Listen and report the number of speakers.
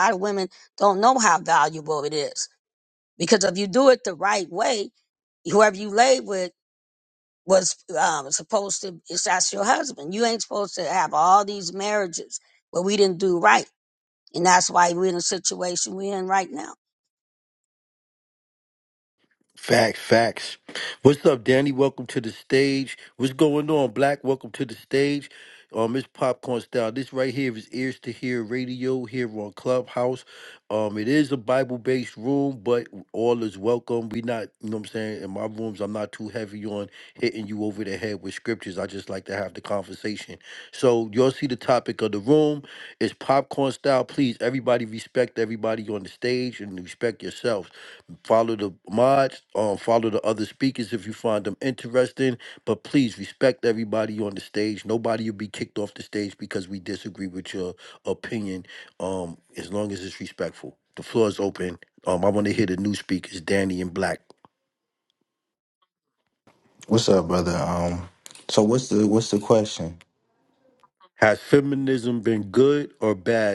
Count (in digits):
3